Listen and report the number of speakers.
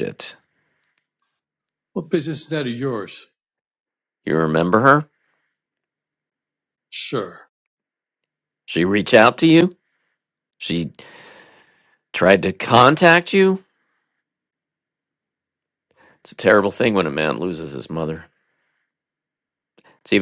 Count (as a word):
two